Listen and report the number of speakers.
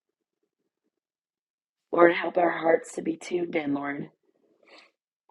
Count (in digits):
1